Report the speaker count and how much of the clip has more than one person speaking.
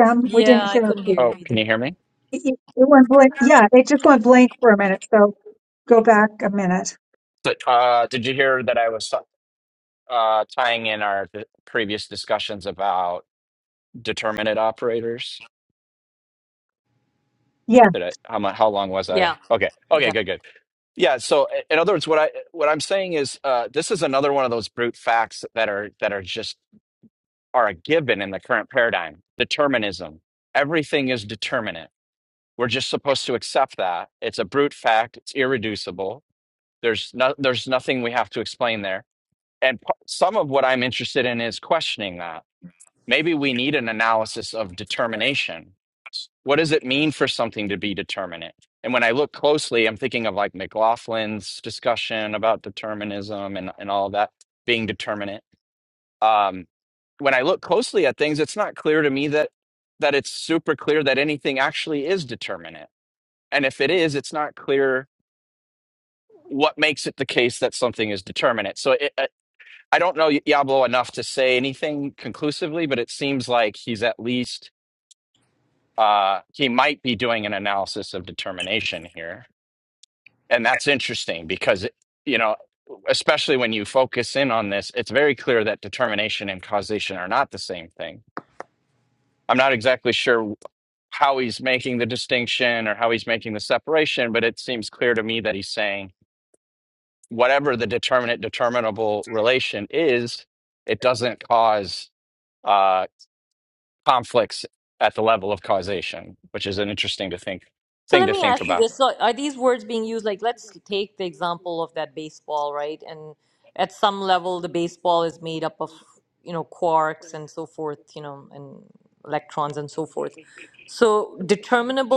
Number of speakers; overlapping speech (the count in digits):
3, about 2%